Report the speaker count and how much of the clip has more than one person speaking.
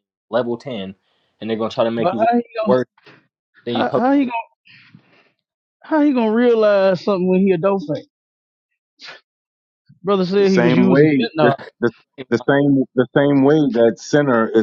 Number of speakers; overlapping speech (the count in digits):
3, about 14%